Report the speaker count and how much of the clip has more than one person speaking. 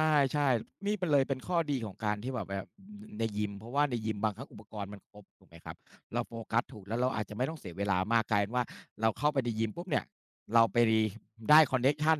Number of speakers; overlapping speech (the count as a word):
one, no overlap